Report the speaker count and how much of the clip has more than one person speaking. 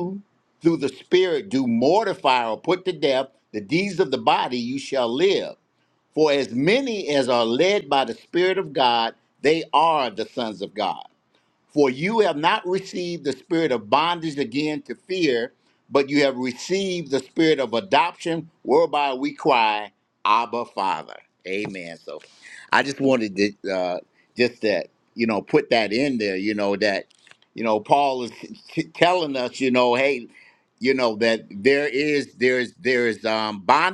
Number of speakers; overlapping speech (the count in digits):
1, no overlap